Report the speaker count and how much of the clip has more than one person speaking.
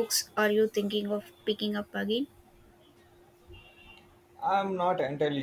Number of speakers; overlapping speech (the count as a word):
two, no overlap